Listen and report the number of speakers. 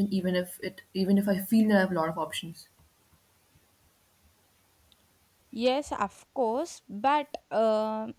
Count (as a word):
two